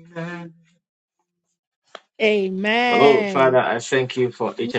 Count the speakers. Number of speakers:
two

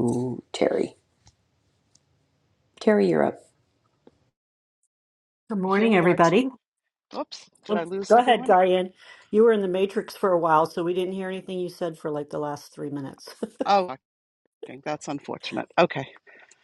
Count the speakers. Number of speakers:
three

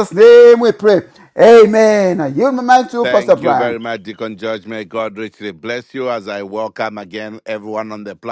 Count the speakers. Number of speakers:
two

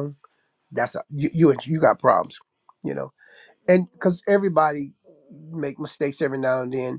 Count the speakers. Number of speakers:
one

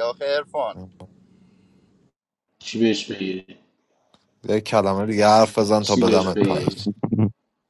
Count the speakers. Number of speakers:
three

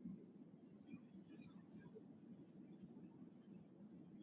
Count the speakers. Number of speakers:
zero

